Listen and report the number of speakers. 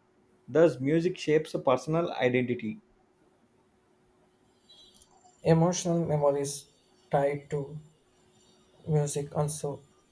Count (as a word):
two